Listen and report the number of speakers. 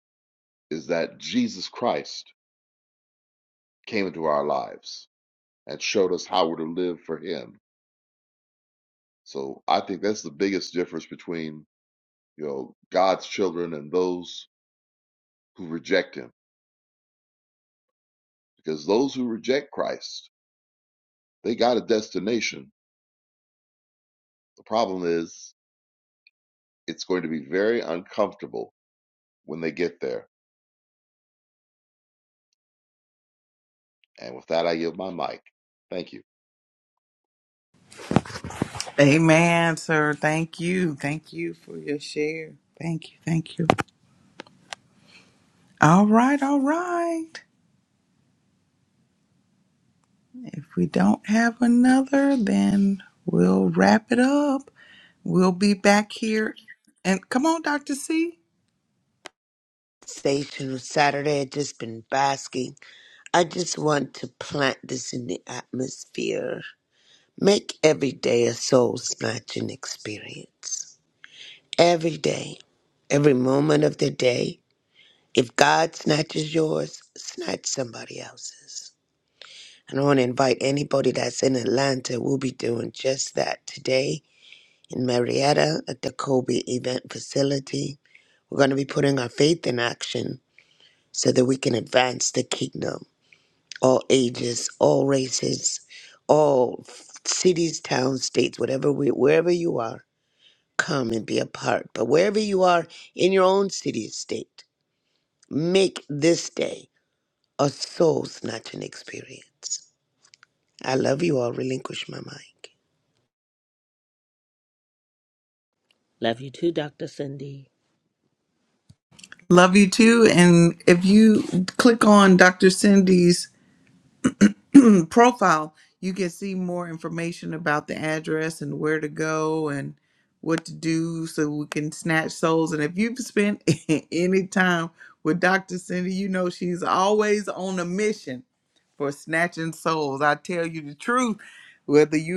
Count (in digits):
4